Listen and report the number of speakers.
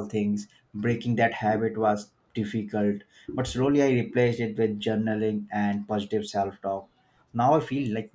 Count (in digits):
1